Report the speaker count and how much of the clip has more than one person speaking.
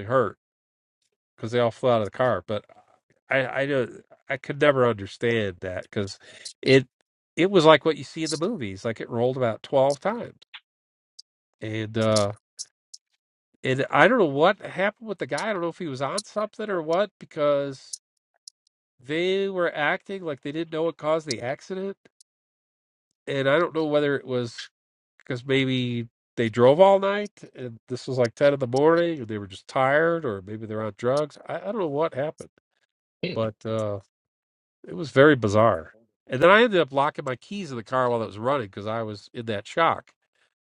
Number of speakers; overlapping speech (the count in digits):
1, no overlap